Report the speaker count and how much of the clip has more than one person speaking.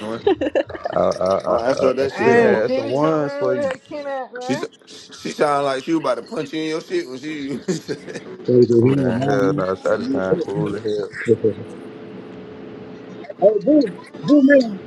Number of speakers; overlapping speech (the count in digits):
4, about 25%